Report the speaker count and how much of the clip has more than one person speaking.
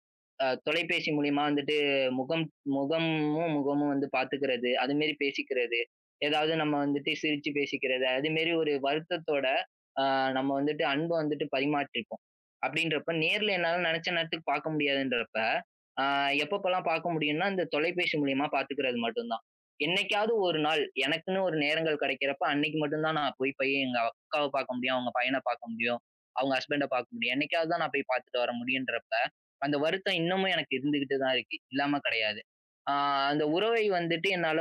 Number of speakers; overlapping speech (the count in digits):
1, no overlap